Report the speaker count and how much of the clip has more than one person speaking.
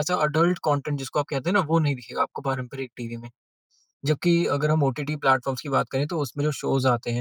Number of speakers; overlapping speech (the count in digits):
1, no overlap